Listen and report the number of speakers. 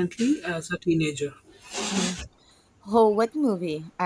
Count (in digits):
2